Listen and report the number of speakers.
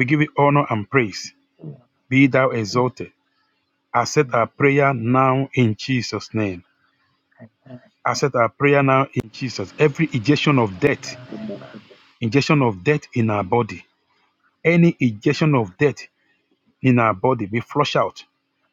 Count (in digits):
2